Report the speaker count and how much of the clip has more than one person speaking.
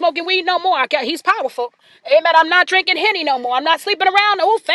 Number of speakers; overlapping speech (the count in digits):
1, no overlap